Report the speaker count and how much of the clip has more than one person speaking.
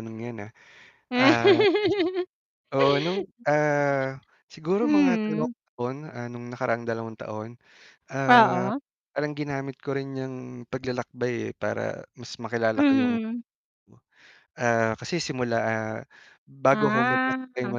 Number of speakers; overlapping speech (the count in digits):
2, about 16%